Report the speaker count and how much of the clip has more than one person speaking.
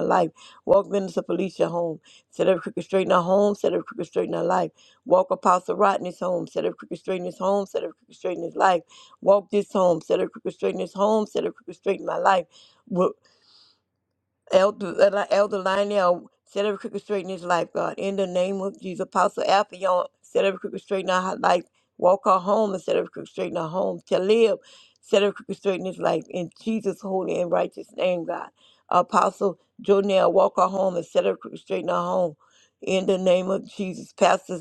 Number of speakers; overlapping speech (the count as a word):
one, no overlap